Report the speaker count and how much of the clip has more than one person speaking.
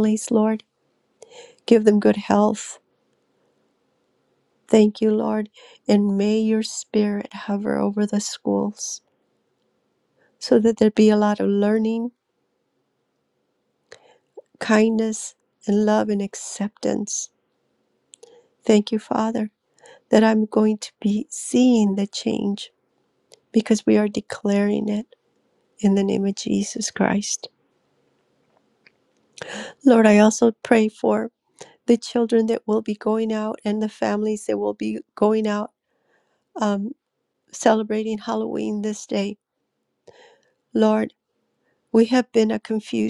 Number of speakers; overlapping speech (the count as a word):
one, no overlap